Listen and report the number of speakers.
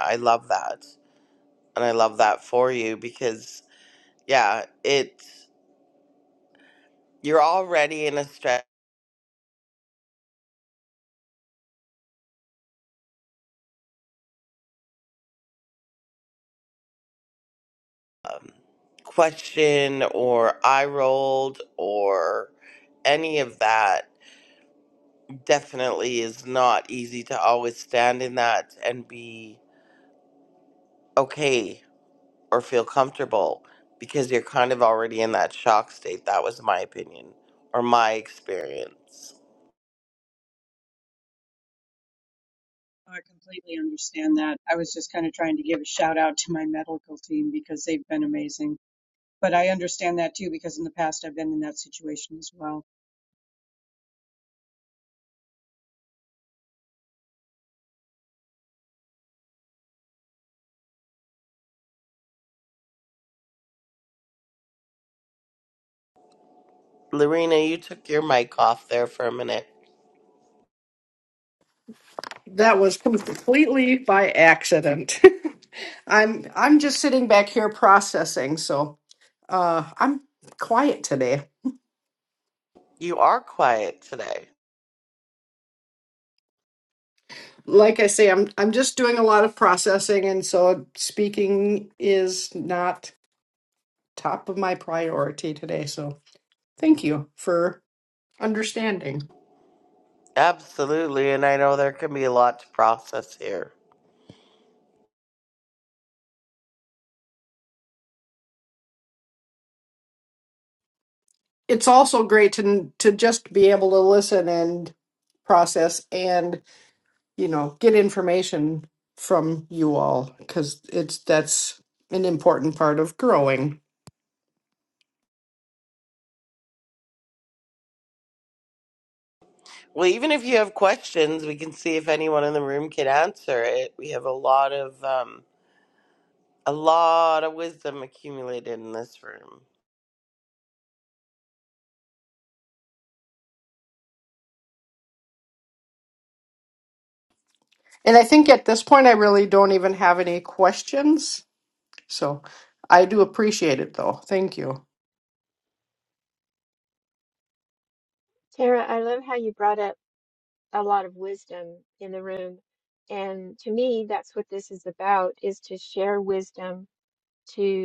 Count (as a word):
four